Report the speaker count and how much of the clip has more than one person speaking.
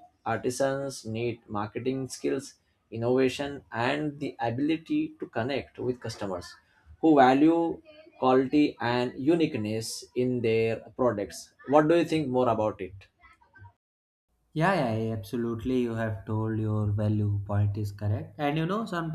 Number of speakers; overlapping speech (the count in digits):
2, no overlap